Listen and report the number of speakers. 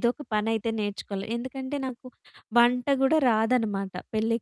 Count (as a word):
one